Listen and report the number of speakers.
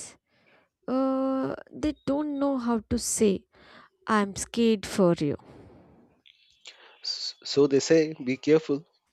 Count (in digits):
2